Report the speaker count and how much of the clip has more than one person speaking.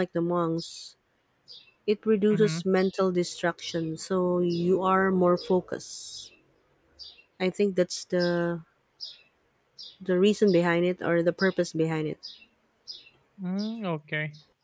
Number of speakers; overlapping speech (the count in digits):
2, about 2%